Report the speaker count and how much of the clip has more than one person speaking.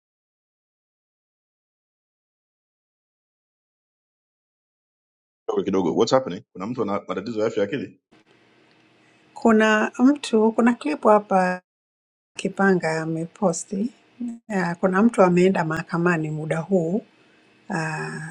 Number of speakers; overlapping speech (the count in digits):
2, no overlap